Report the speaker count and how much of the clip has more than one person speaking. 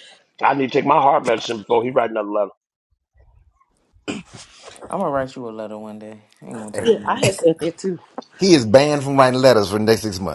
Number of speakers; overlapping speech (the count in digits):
4, about 5%